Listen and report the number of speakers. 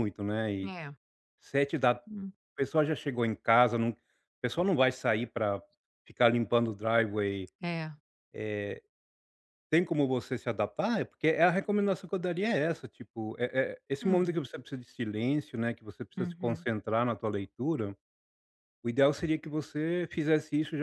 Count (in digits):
2